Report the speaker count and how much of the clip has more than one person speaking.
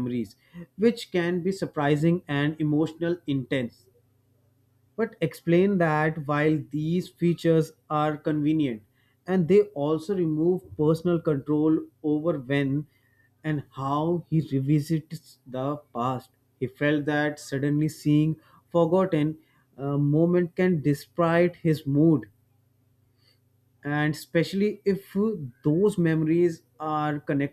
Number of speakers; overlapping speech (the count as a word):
one, no overlap